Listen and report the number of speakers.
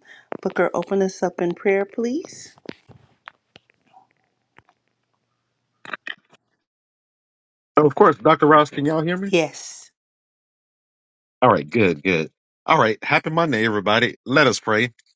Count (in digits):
2